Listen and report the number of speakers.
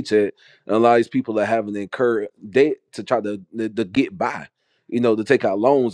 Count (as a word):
one